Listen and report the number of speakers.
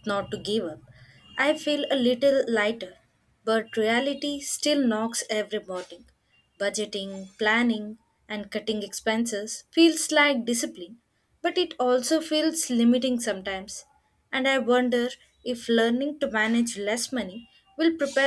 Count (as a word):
one